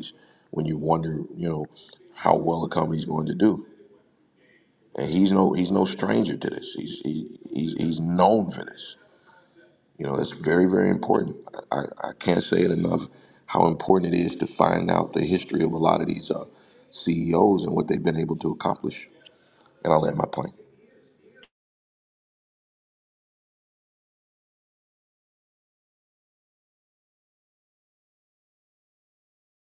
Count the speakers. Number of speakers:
one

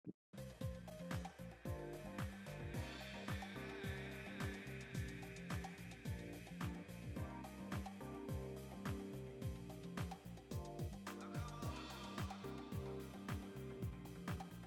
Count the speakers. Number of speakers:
zero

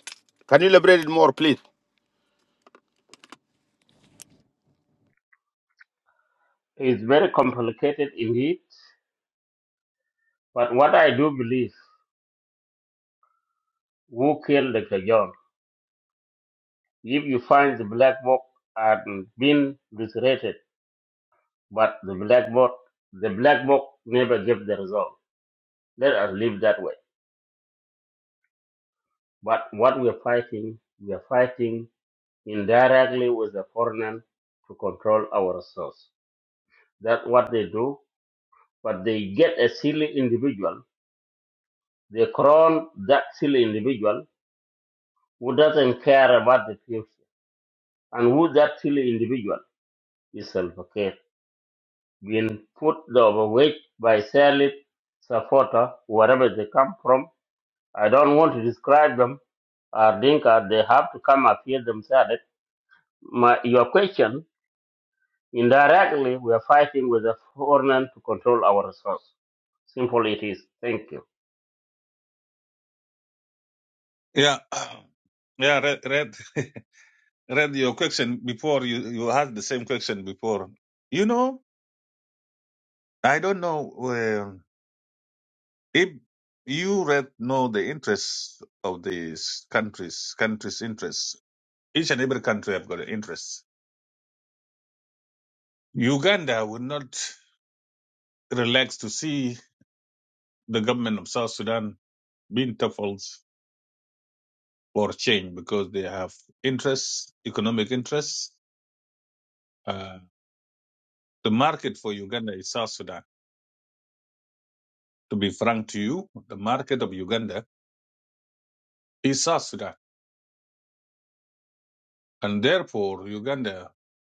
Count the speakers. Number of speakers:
three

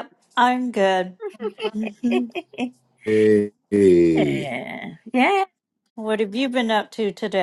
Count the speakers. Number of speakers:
three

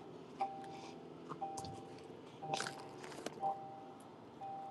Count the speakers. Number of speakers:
zero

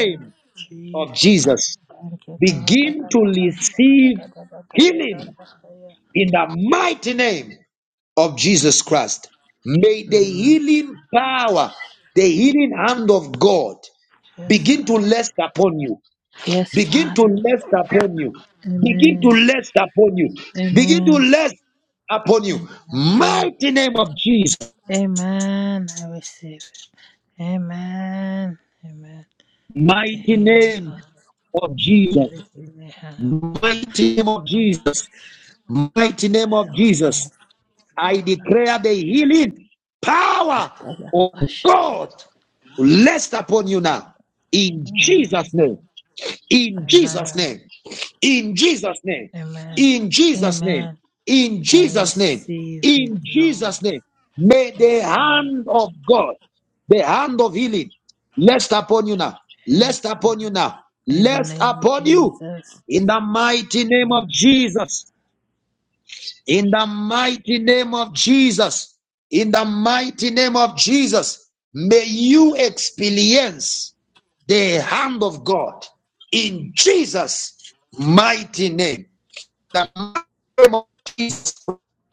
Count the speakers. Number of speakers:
two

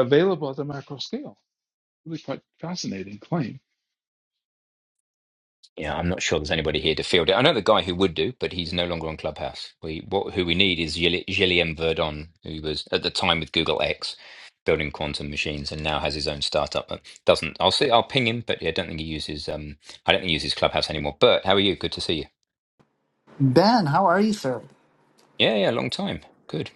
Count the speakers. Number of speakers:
three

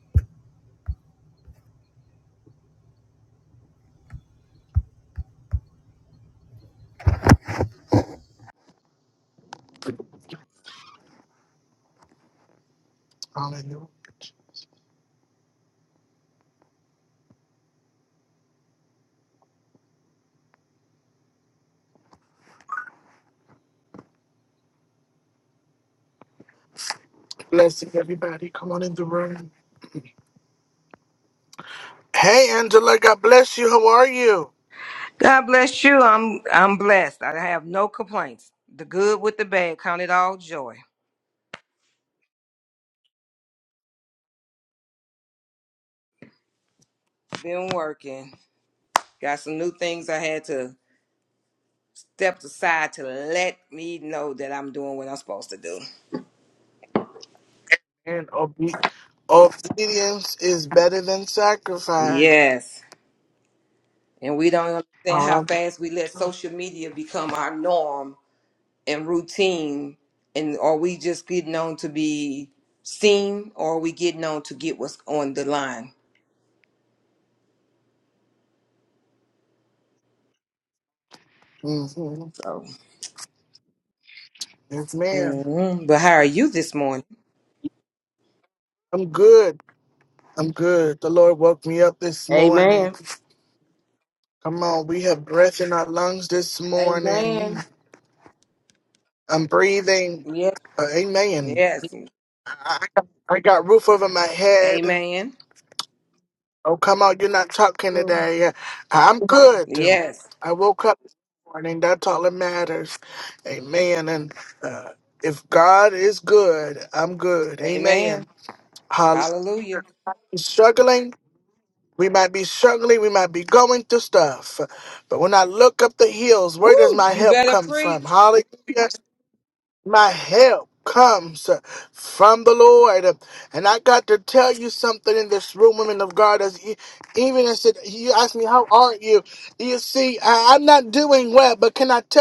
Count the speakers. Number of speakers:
two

